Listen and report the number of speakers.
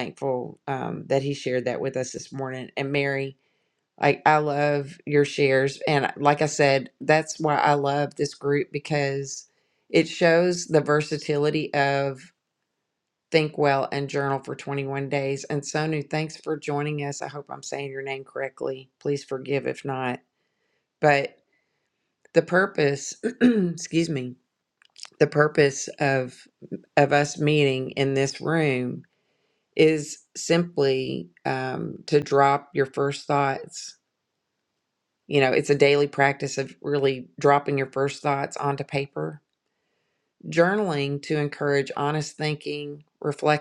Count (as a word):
one